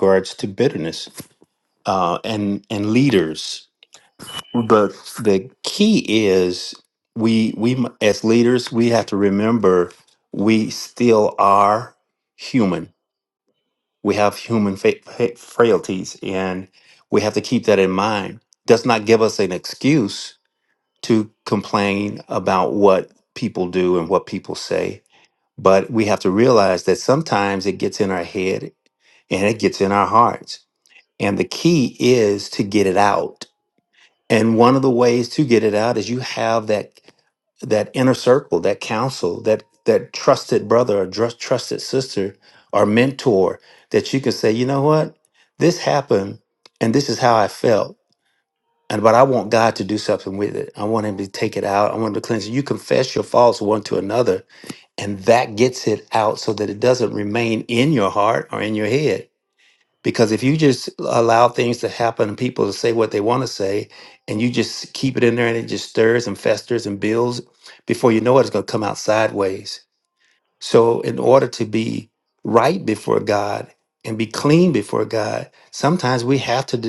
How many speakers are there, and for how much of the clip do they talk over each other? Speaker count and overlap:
1, no overlap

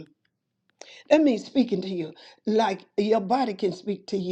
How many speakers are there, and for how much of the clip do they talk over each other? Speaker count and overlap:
1, no overlap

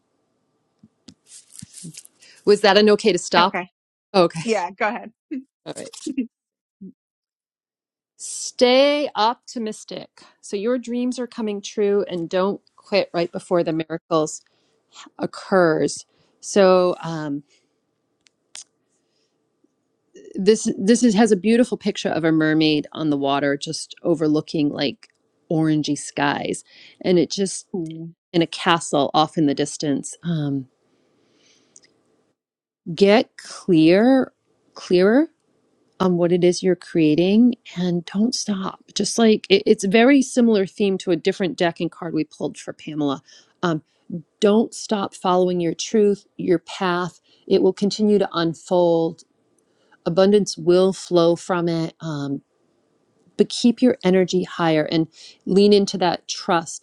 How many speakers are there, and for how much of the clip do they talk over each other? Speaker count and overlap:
2, under 1%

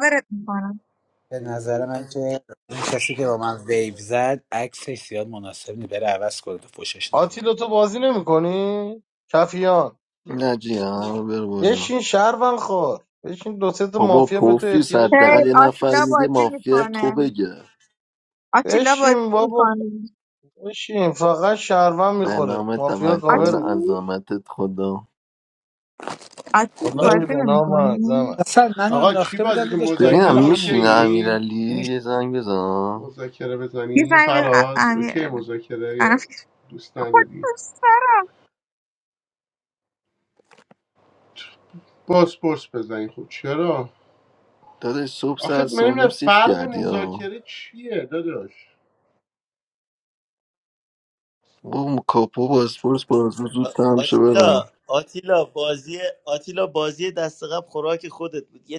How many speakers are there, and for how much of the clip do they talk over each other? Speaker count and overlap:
6, about 27%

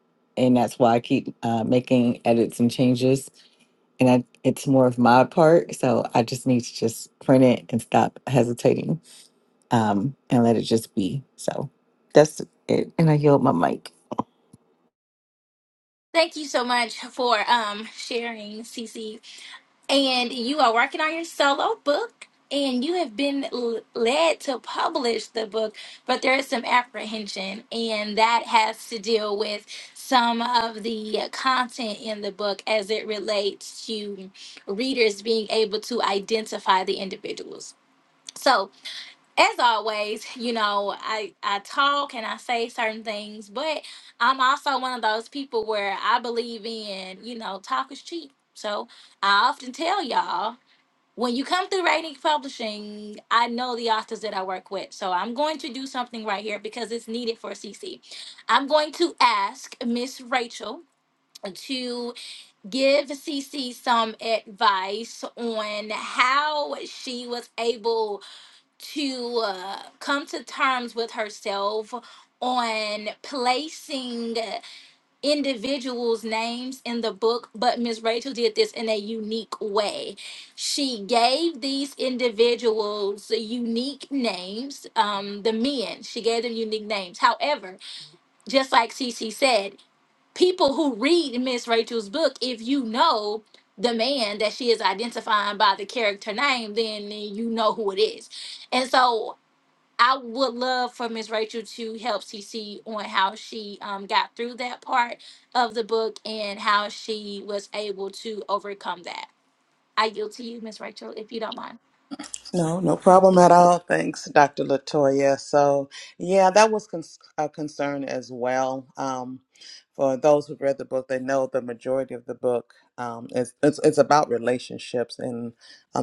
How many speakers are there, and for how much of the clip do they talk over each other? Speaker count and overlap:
3, no overlap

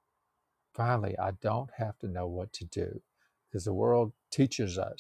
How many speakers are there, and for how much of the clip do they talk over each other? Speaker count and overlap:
1, no overlap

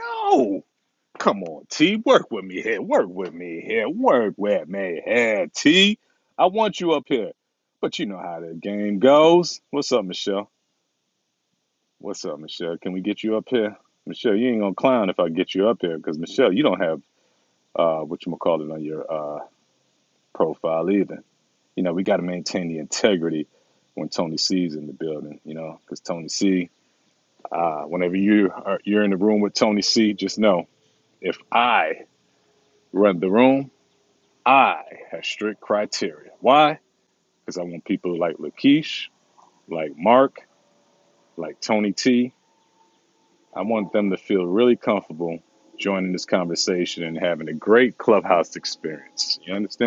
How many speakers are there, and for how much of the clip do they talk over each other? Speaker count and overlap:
1, no overlap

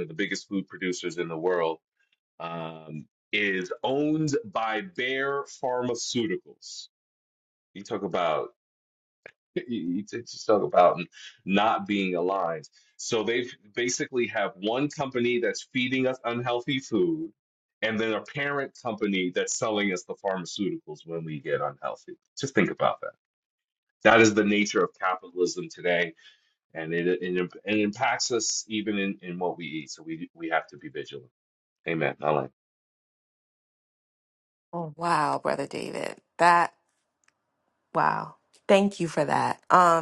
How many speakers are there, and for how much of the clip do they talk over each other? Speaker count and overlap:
2, no overlap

